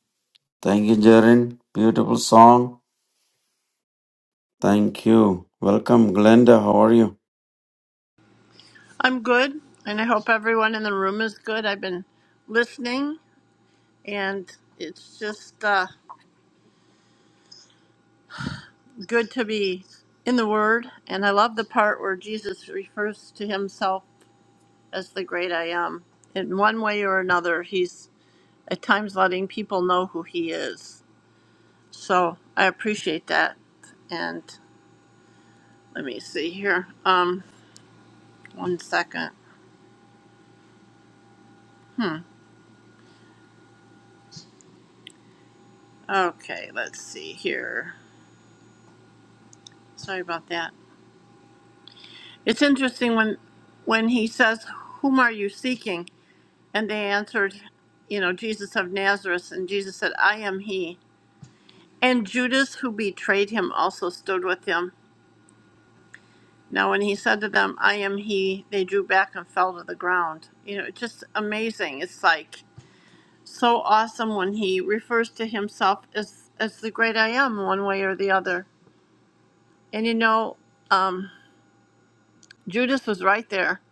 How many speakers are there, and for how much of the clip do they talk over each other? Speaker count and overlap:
2, no overlap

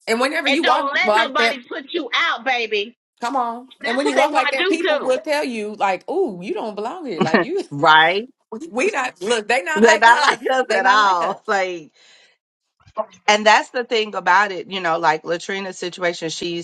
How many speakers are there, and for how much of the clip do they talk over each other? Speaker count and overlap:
3, about 25%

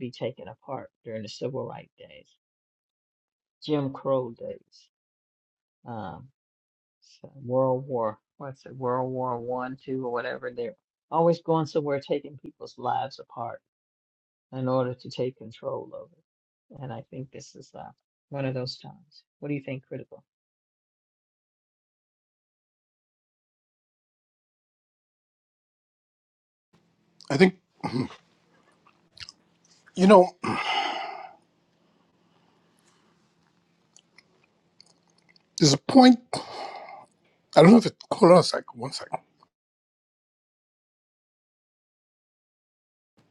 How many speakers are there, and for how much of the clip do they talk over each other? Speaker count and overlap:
2, no overlap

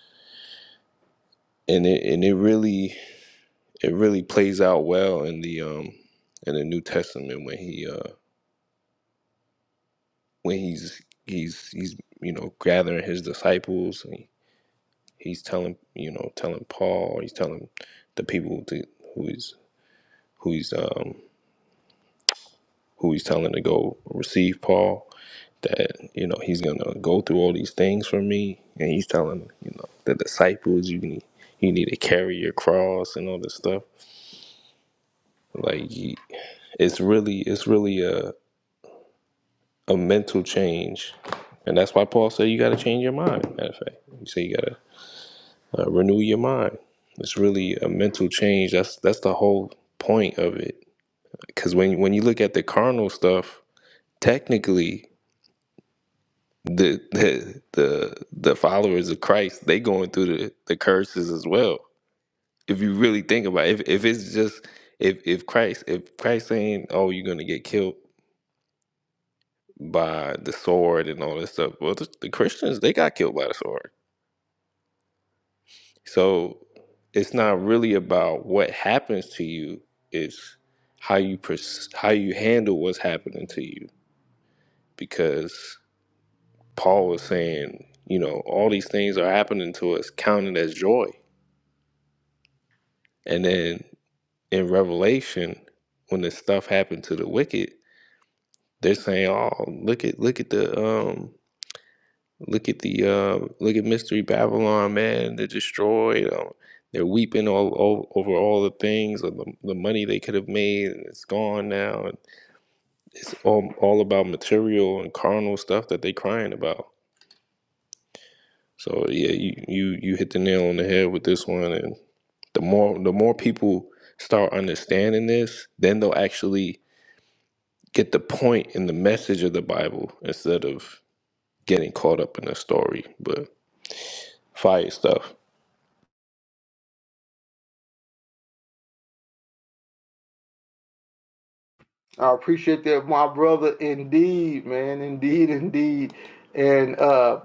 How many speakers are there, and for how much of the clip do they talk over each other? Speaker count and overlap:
2, no overlap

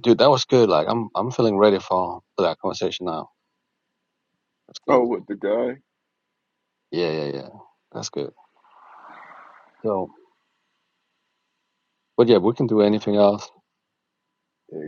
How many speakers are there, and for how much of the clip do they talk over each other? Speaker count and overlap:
2, about 1%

